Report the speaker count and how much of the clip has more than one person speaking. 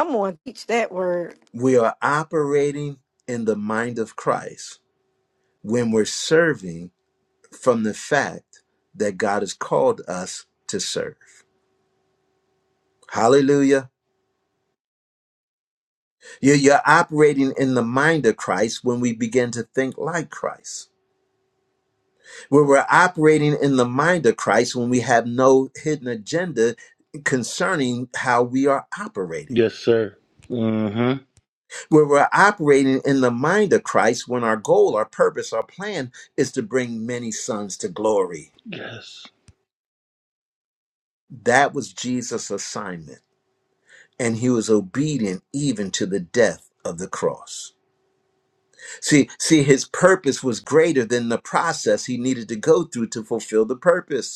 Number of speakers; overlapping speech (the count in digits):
3, no overlap